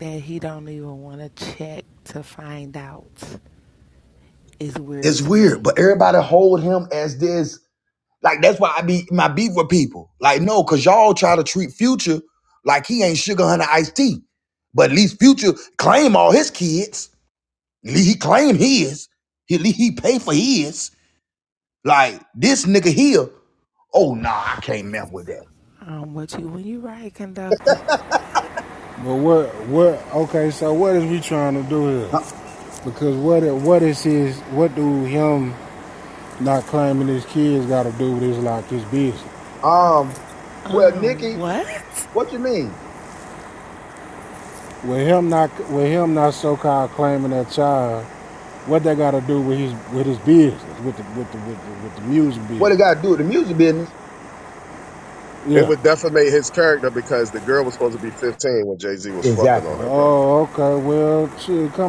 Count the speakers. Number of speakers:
four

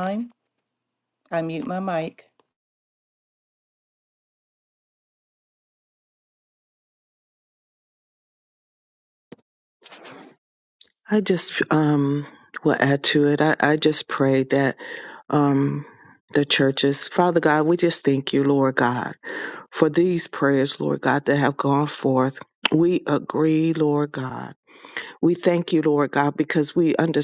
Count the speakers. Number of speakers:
two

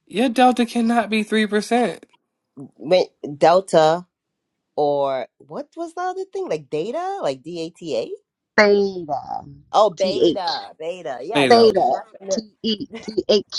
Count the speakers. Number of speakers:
three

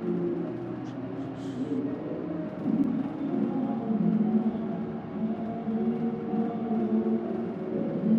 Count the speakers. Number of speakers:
zero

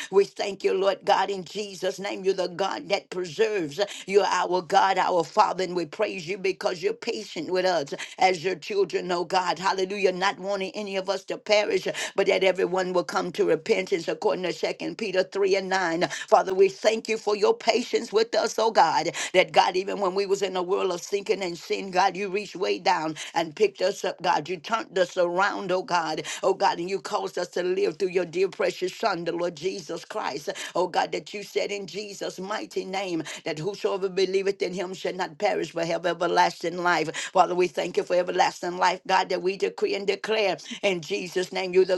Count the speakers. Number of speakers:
one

